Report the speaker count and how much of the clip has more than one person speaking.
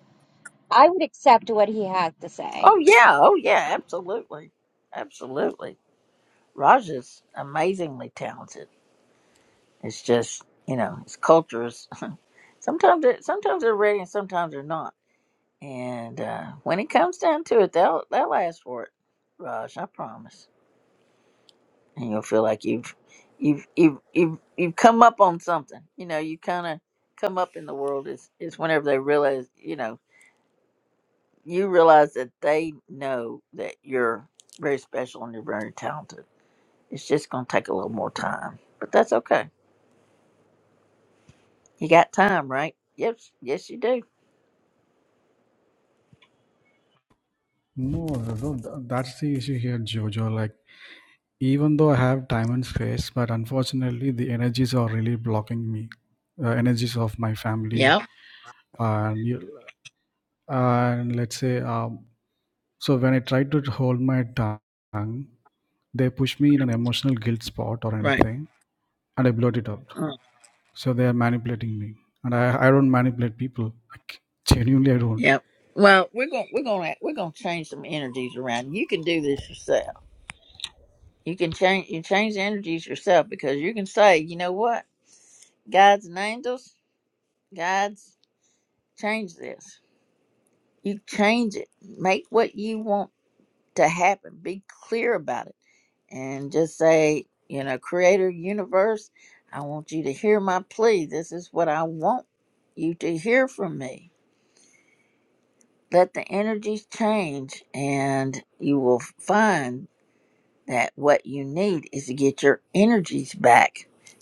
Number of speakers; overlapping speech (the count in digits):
3, about 1%